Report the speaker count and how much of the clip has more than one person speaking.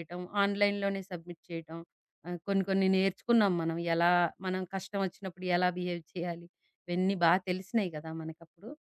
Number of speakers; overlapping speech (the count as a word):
one, no overlap